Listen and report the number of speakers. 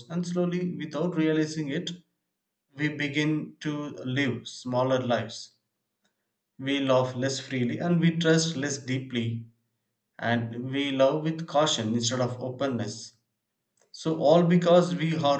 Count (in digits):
1